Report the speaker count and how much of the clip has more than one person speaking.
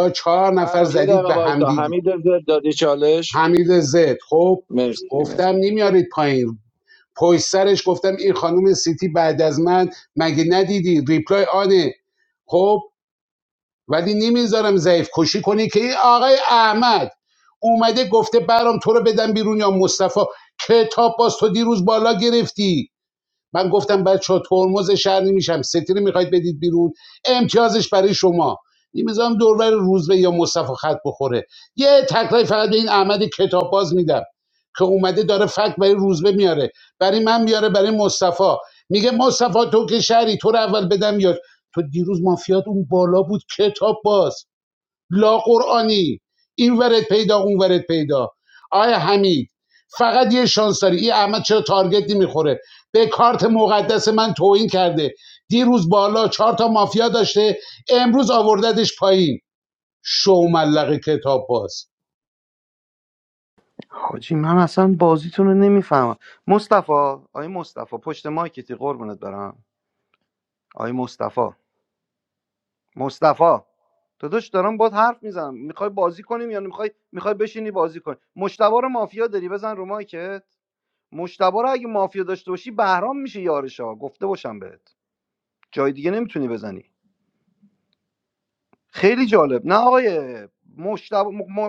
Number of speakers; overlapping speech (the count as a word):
three, about 2%